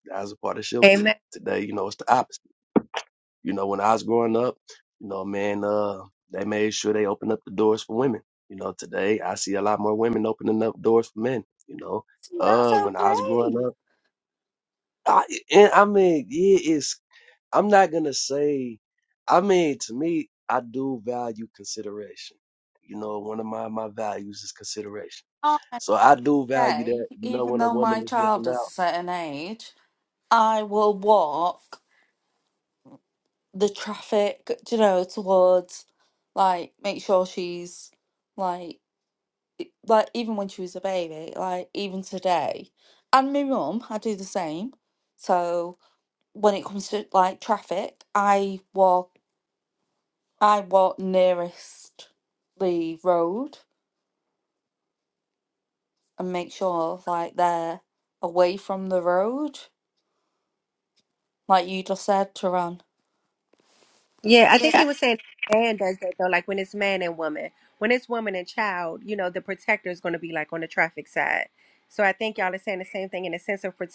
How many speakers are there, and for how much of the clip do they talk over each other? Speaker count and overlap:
three, about 6%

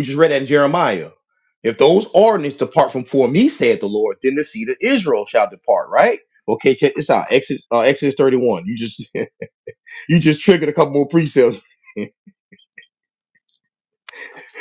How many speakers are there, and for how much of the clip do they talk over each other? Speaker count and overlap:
one, no overlap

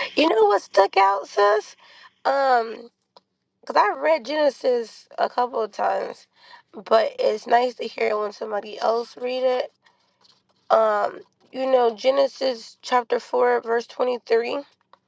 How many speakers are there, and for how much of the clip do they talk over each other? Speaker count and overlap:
one, no overlap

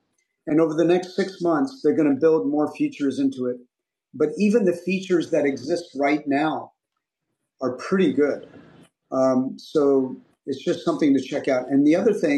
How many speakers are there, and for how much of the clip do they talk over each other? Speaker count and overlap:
one, no overlap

